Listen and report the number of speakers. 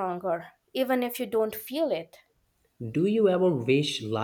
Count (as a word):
two